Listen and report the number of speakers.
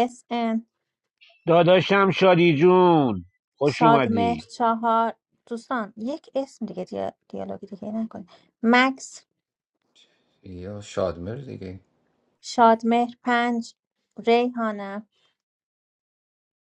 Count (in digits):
3